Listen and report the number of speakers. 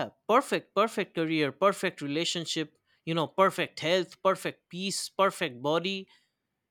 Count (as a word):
one